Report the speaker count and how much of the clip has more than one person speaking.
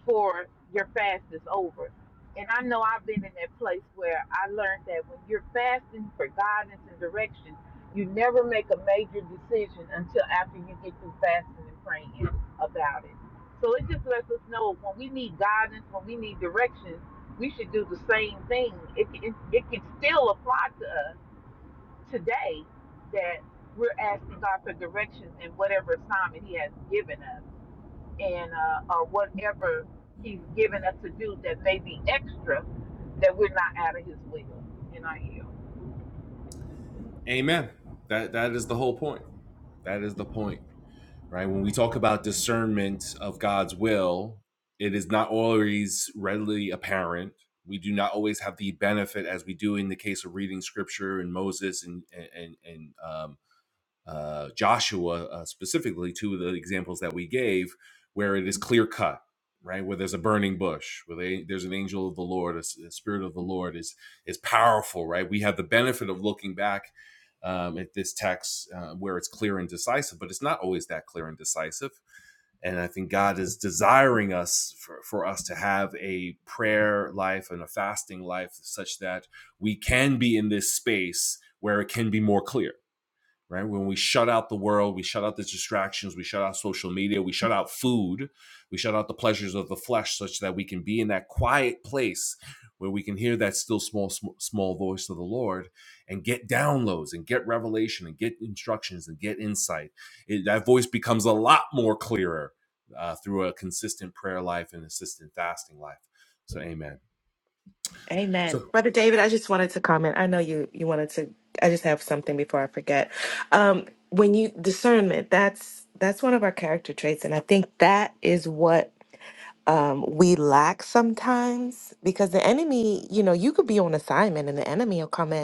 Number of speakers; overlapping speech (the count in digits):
3, under 1%